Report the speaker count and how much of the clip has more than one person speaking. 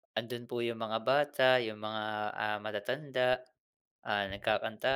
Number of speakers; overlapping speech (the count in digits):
1, no overlap